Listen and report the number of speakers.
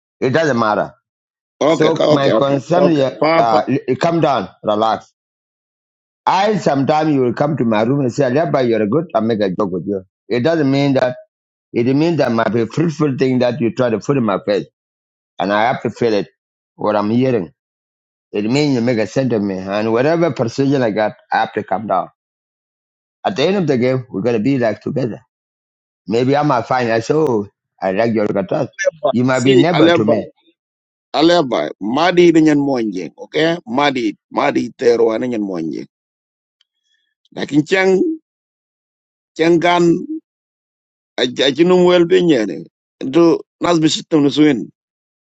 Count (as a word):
two